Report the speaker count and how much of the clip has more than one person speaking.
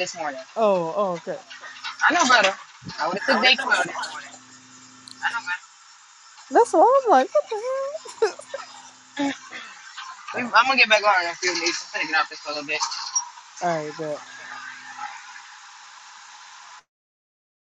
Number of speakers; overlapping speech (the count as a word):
two, no overlap